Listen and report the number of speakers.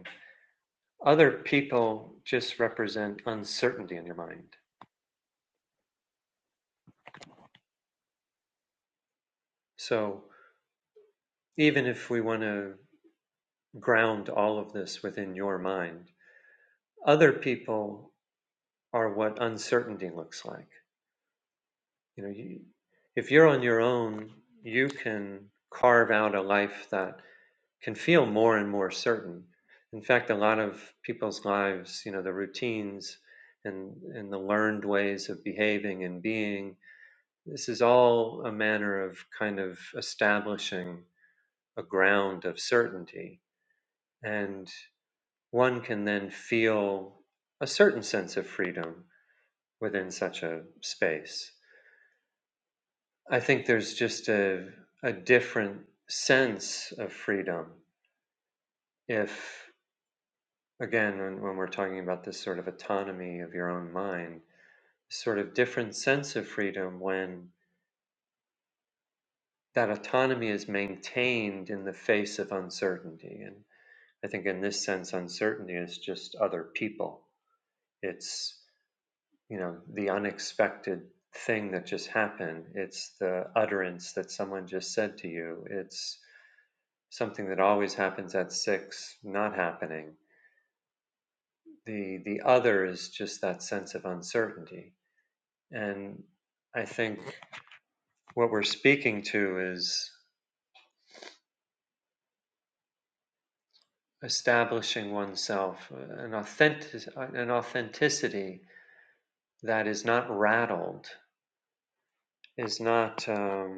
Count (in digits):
1